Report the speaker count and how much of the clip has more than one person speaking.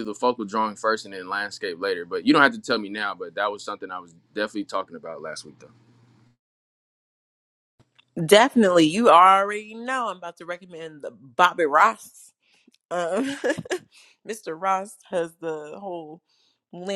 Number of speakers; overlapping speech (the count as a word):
two, no overlap